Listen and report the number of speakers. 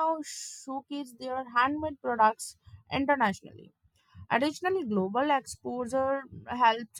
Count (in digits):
1